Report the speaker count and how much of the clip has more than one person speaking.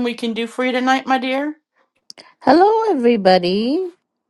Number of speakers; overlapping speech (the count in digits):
2, no overlap